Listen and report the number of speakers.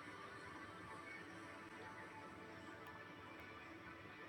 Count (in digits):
0